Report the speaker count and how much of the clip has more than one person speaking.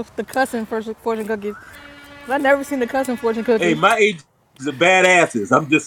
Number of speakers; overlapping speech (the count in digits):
2, about 4%